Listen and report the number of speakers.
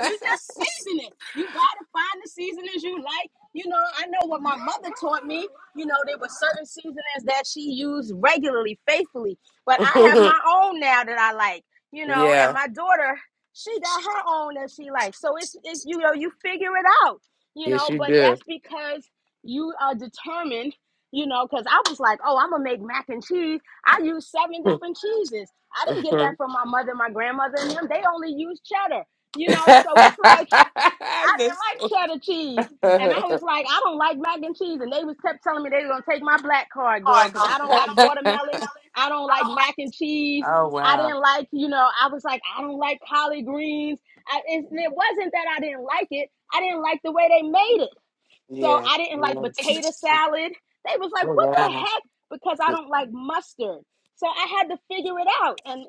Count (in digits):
2